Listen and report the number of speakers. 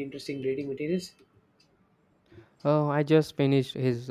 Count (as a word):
two